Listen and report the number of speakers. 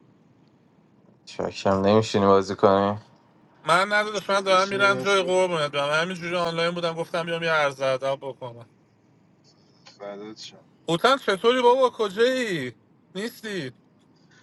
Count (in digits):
3